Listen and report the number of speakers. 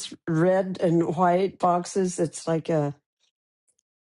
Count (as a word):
one